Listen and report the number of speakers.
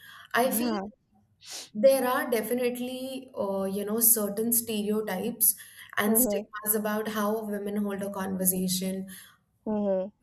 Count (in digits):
2